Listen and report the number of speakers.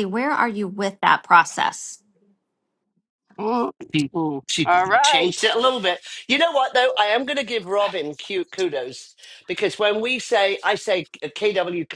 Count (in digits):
3